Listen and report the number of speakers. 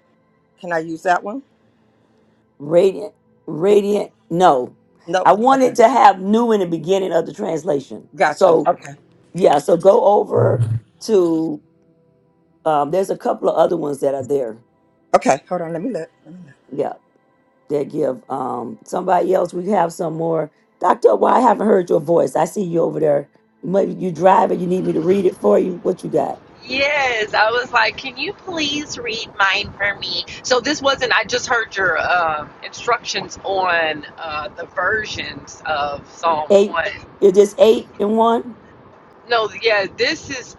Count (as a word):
three